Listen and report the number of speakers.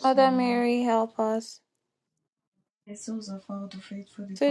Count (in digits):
2